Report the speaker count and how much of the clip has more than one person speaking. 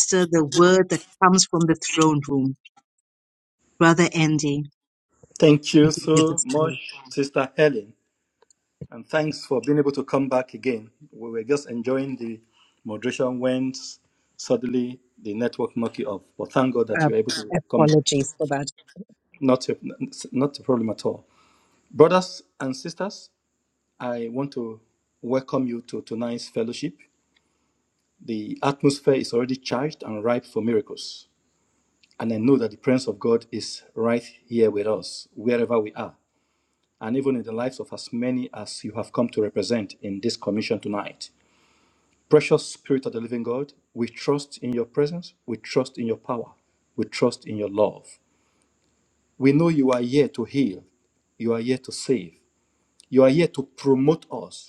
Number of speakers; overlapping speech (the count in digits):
2, about 2%